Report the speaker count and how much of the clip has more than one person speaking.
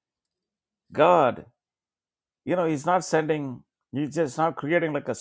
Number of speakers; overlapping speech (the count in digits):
1, no overlap